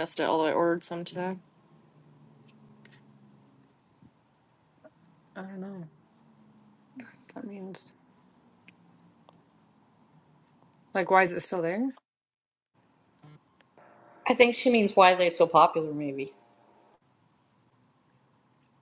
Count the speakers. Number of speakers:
three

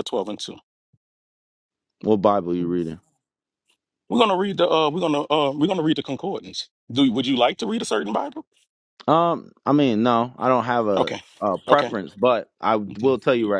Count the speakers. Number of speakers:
two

